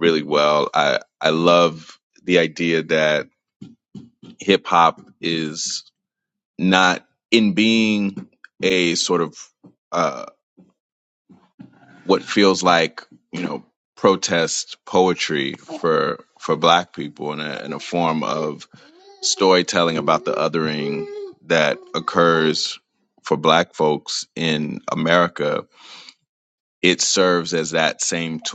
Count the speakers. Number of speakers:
1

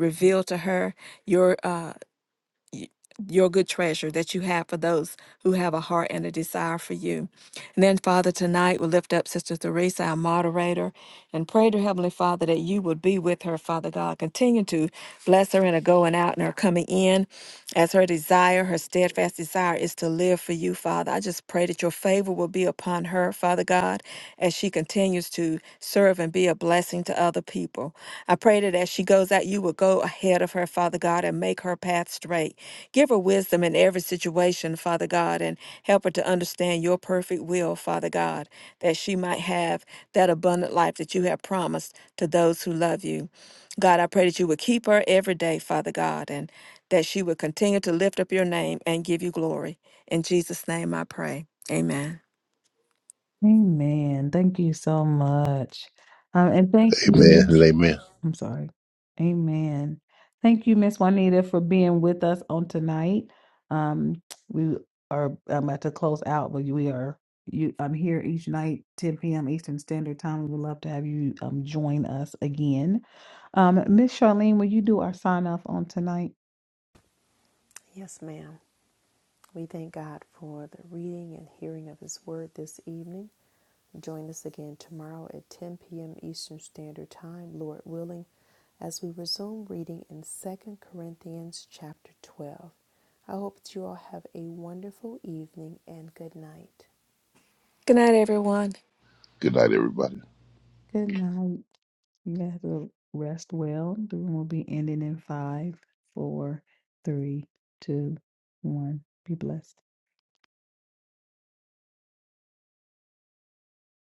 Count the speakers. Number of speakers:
4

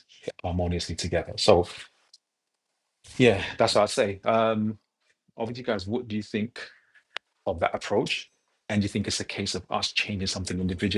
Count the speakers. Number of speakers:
1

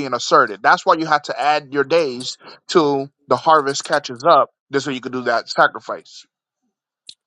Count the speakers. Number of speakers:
1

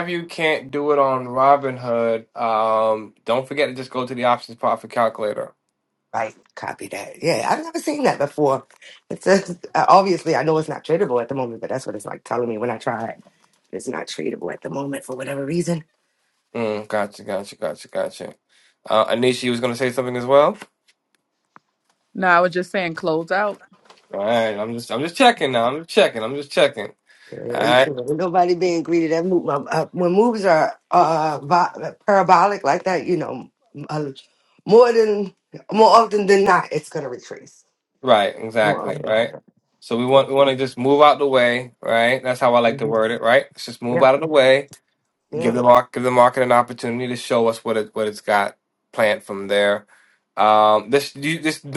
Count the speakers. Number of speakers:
3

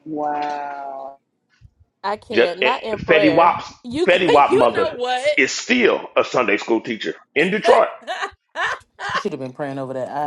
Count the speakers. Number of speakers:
4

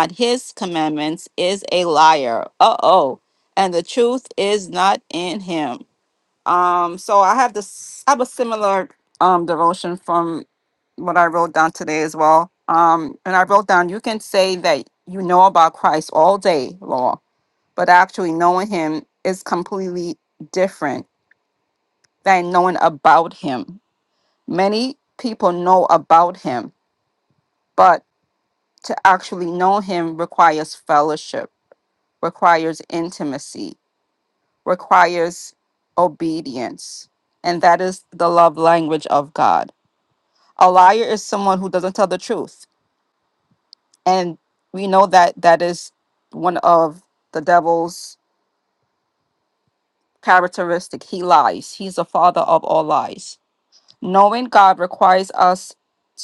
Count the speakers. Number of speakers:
1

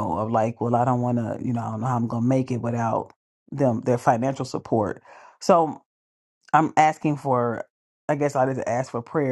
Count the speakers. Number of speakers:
1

